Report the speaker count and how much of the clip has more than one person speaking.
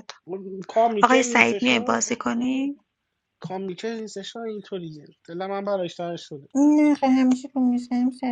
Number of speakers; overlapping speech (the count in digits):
3, about 9%